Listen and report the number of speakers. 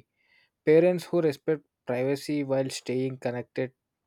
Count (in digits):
1